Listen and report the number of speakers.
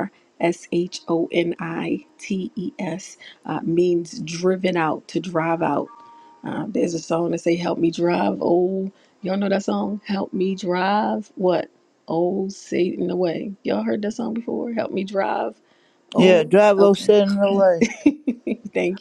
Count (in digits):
2